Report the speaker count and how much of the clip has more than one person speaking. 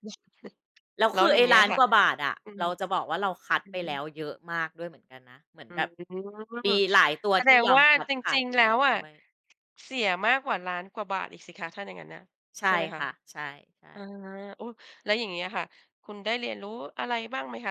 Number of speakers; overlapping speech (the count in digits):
2, about 18%